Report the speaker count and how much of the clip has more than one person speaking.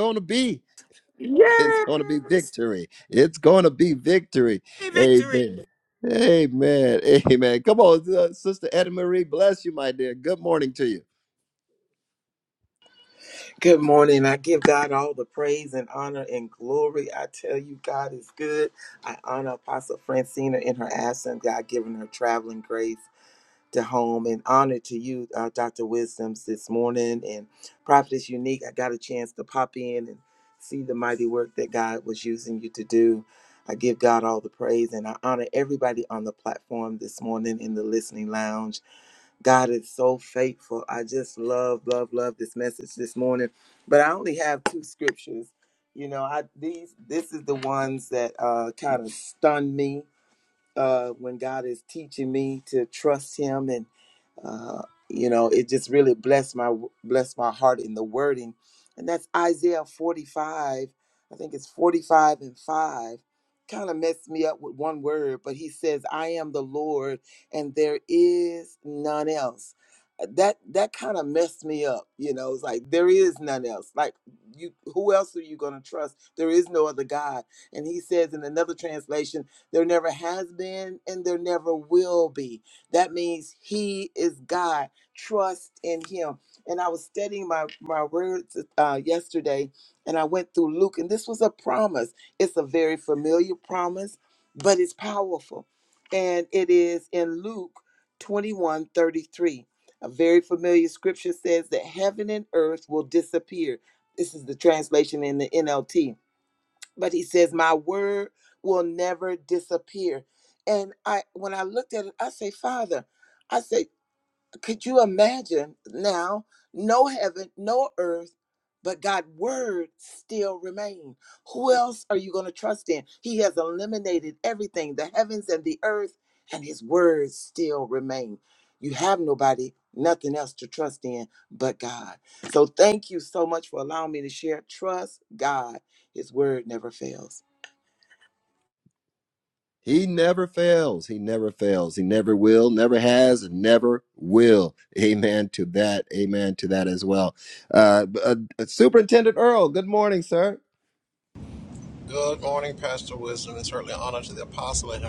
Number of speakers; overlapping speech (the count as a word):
four, about 1%